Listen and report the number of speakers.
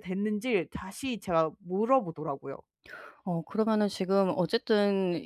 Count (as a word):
two